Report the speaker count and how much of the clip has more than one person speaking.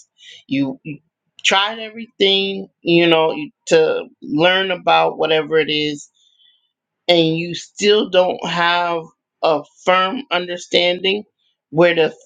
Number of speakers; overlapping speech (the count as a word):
one, no overlap